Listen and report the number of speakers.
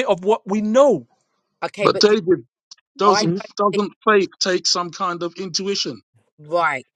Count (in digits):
3